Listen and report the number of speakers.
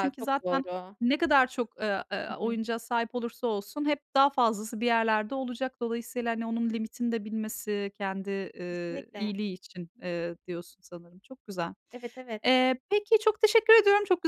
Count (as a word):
two